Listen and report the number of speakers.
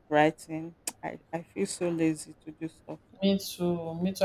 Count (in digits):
2